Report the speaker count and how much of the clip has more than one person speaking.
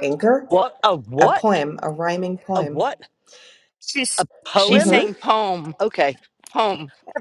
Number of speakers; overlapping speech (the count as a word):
three, about 15%